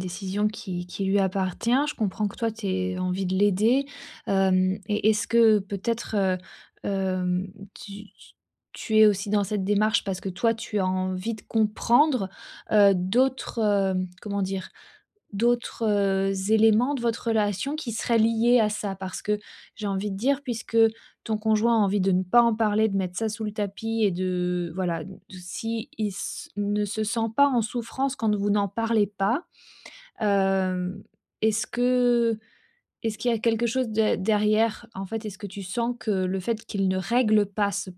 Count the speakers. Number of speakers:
1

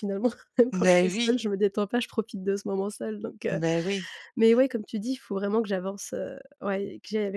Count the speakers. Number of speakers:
2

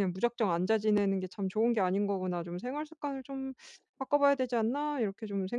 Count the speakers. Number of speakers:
1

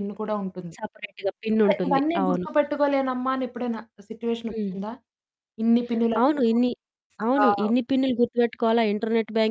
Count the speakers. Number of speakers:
2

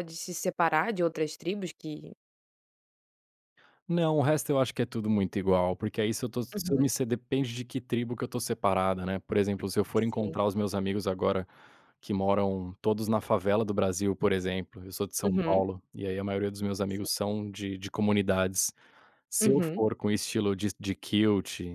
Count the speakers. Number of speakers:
2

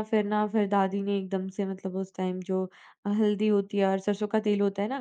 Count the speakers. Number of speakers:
1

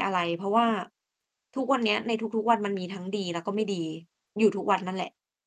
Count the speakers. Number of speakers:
1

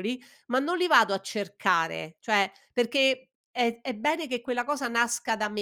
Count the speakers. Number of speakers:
1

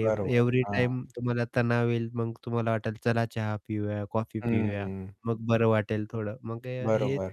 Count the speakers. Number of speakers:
2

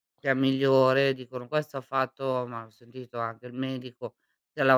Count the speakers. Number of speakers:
1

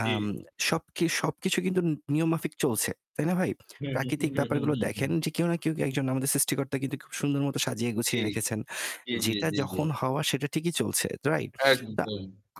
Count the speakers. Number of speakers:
2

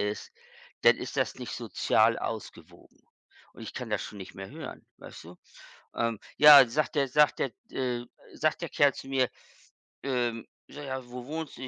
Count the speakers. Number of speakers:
1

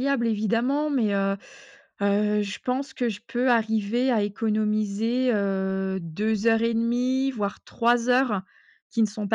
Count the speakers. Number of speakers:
1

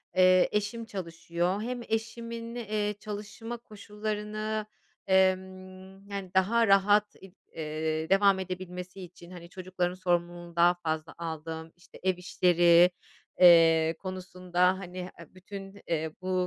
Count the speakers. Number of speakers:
1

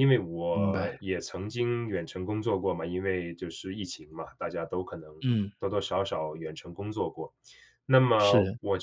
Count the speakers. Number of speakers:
2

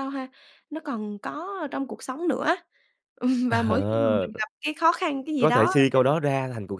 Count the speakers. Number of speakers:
2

